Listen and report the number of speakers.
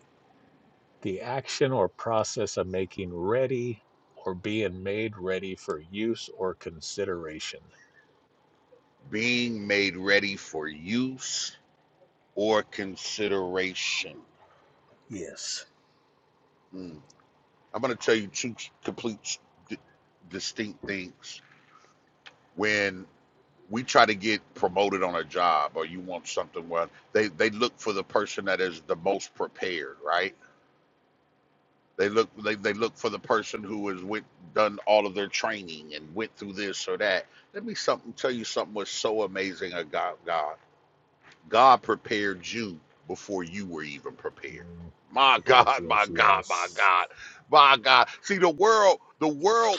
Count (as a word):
two